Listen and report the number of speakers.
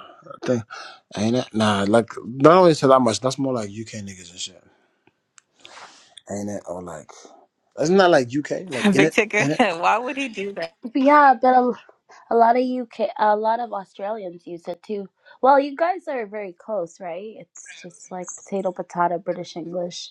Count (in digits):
3